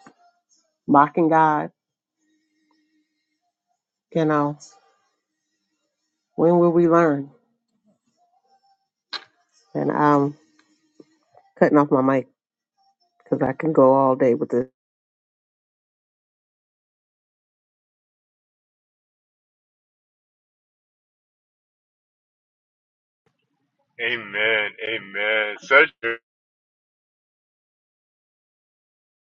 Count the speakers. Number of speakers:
two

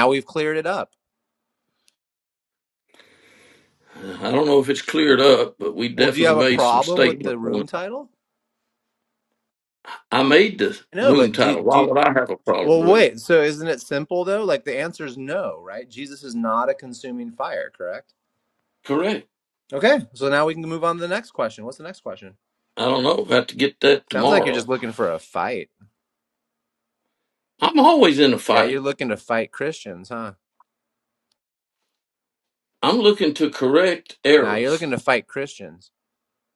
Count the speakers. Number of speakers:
two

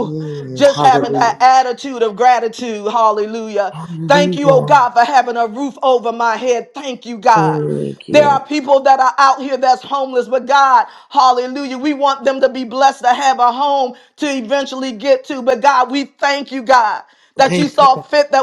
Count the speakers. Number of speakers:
two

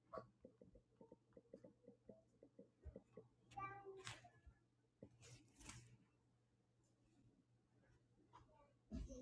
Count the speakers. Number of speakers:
zero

